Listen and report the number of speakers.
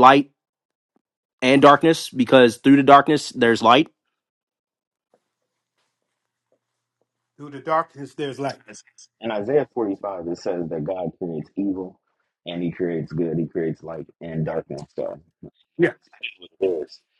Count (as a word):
three